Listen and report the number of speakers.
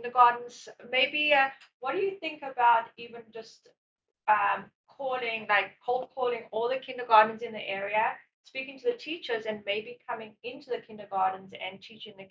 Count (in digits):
1